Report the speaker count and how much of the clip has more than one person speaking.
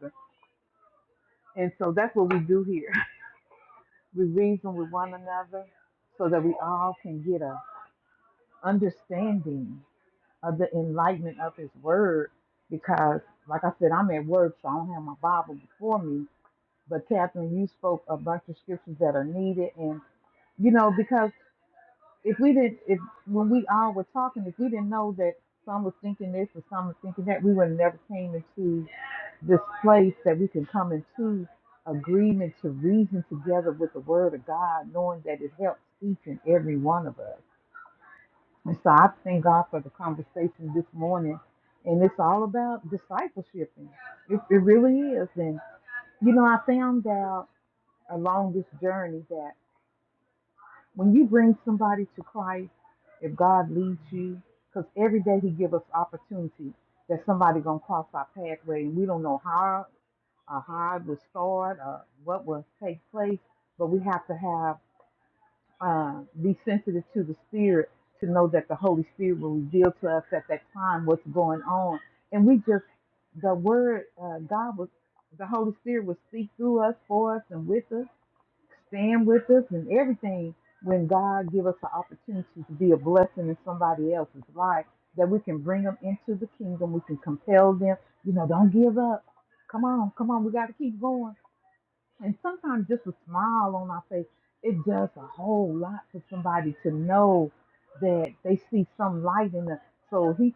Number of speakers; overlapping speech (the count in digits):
1, no overlap